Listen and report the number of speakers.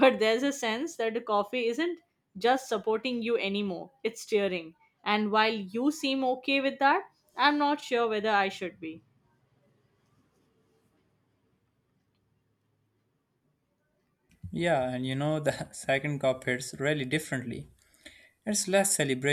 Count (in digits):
2